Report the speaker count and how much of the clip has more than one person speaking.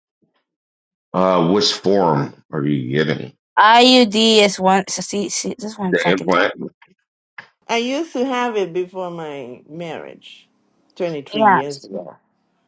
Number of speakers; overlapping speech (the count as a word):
three, about 8%